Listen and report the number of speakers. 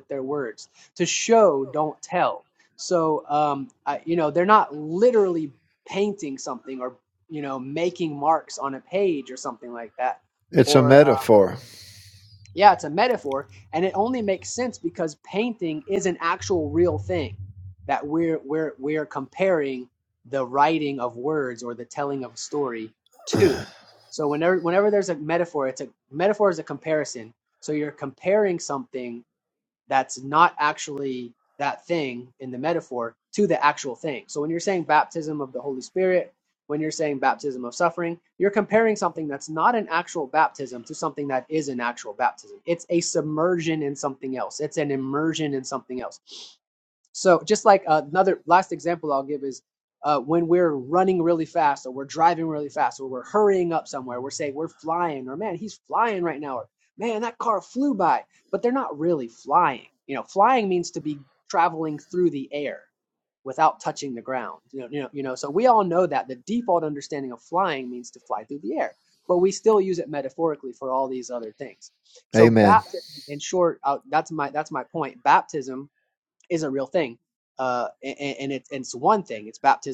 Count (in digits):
2